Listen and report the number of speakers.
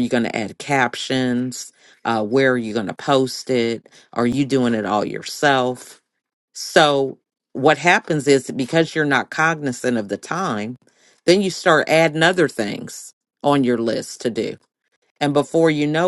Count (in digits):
1